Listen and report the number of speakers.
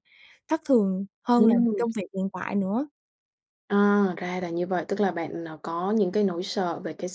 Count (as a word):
two